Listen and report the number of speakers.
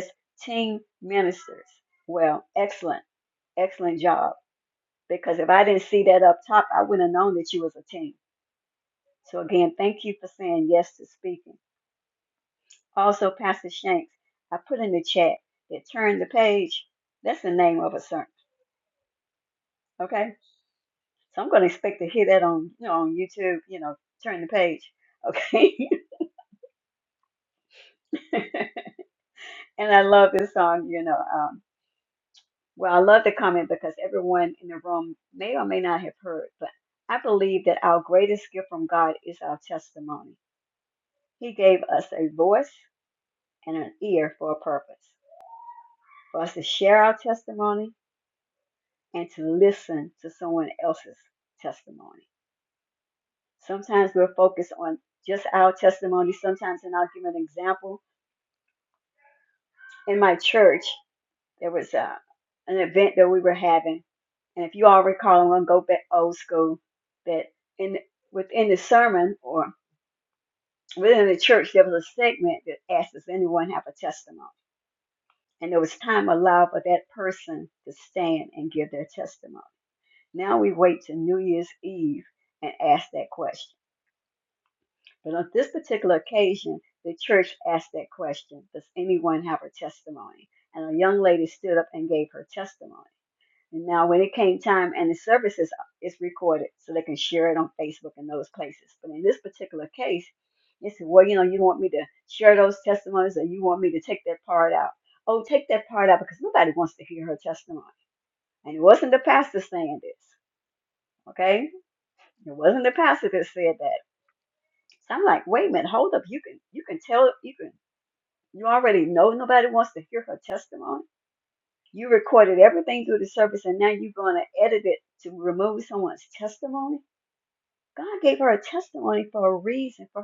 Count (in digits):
1